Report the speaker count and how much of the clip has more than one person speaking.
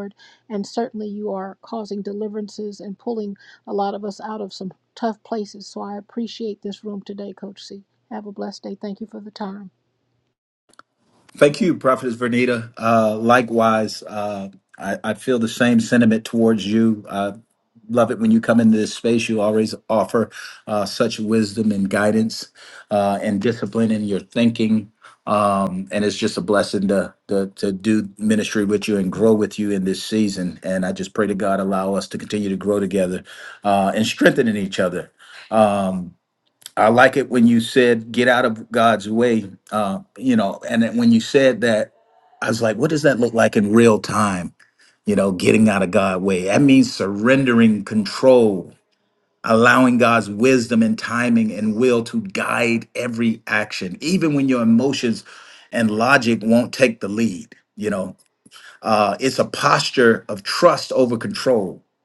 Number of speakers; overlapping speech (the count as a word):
two, no overlap